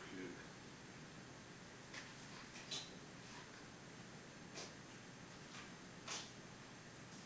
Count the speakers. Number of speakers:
zero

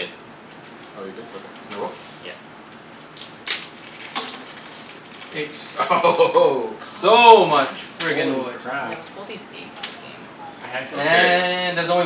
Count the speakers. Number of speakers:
four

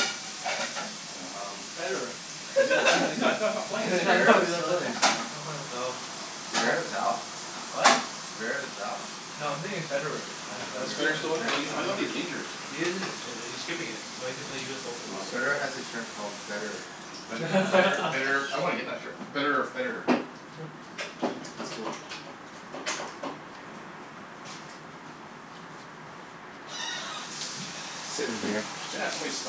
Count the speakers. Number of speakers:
three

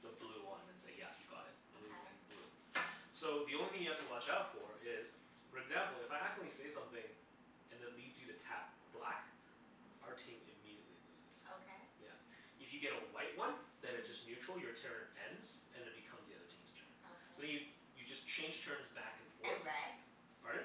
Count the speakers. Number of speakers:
two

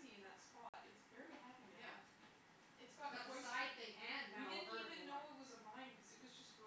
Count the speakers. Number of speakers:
two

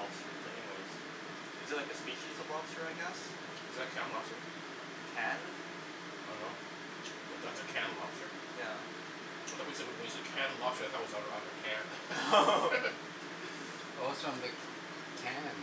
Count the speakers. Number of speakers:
three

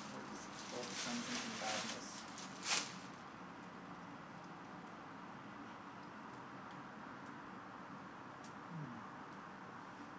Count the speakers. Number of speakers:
one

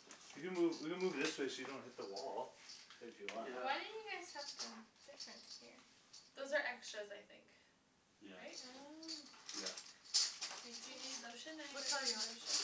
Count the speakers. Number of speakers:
four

